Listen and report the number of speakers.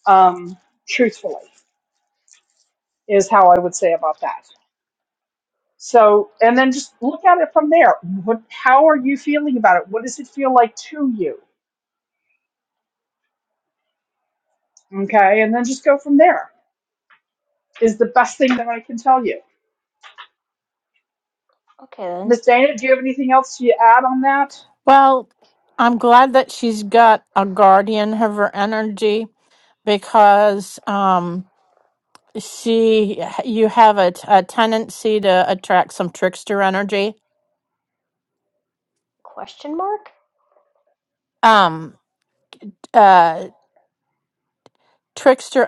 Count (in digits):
3